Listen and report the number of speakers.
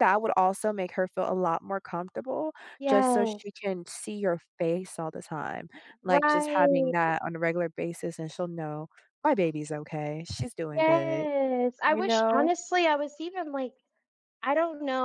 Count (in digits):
2